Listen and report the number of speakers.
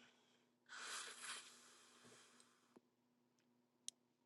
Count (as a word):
zero